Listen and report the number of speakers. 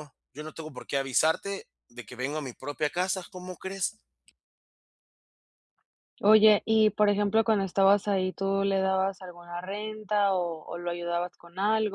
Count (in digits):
2